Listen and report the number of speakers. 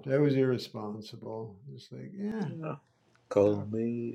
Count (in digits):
2